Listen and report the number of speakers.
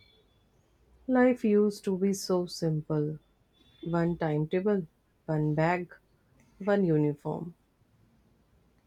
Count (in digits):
1